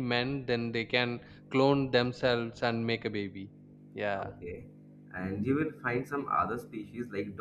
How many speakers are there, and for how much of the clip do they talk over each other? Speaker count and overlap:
2, about 2%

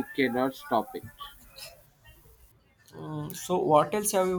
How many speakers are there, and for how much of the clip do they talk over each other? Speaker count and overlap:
2, no overlap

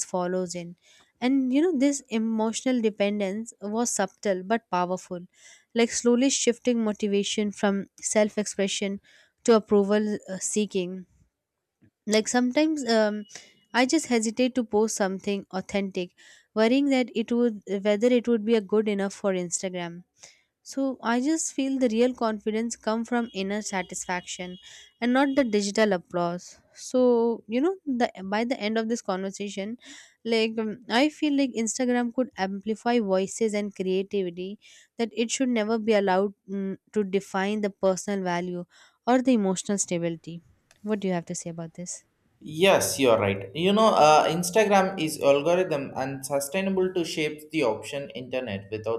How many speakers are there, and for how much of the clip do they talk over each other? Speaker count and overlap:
2, no overlap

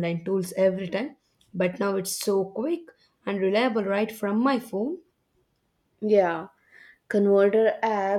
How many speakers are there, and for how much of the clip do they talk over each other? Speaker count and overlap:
2, no overlap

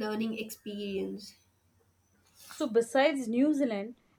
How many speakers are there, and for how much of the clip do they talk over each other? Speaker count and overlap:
2, no overlap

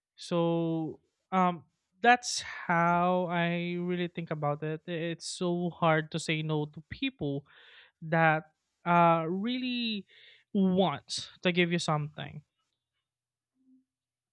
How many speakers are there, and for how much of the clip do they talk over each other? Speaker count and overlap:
1, no overlap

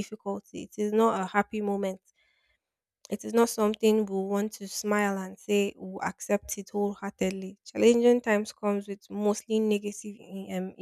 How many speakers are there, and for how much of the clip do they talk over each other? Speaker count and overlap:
1, no overlap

